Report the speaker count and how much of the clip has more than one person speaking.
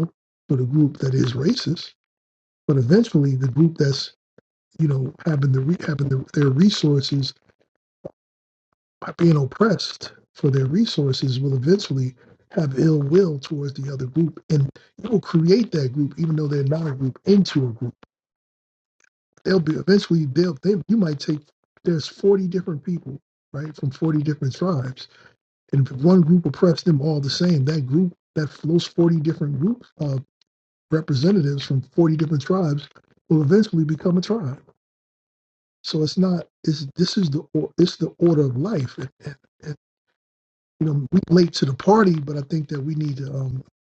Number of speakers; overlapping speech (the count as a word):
one, no overlap